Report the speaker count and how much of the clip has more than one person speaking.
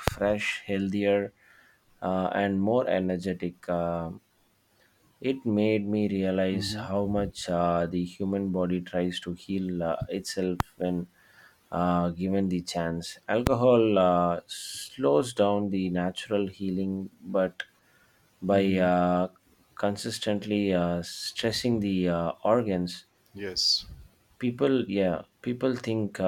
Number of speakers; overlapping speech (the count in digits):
2, about 3%